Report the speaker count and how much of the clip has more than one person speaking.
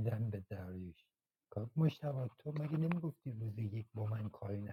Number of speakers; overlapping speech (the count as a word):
one, no overlap